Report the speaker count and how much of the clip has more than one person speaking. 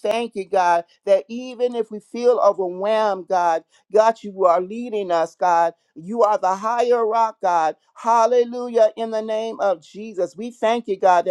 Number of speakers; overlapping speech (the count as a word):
one, no overlap